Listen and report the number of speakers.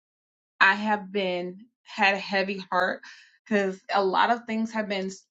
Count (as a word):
one